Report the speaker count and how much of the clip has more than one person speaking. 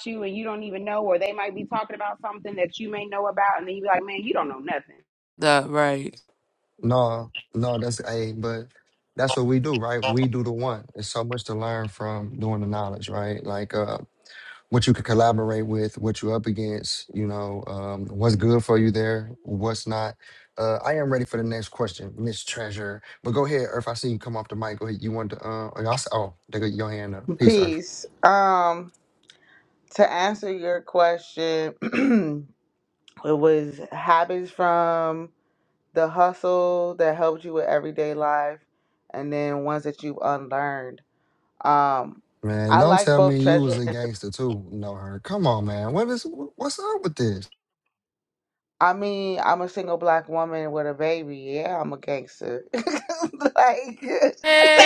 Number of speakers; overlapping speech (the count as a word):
four, about 4%